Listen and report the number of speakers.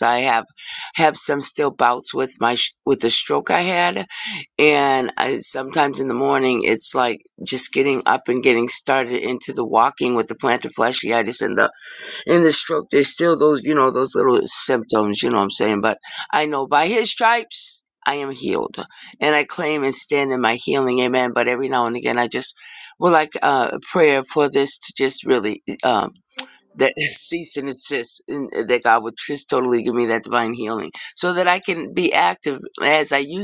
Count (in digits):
1